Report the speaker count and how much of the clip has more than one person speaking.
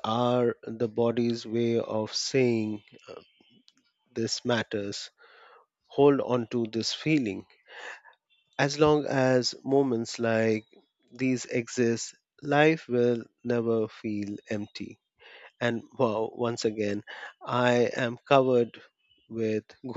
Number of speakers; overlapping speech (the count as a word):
one, no overlap